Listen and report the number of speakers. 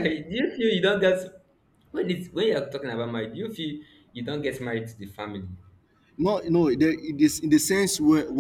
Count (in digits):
2